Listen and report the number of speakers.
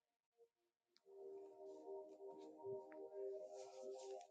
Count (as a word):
zero